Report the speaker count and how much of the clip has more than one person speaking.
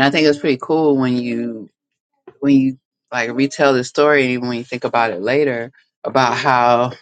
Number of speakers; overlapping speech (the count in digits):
1, no overlap